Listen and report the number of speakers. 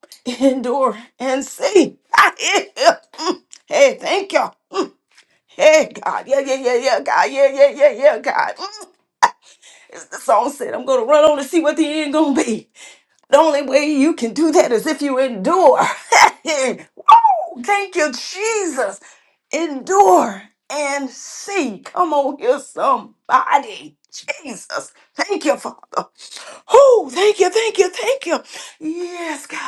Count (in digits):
1